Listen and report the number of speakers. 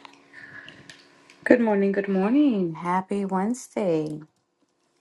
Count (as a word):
one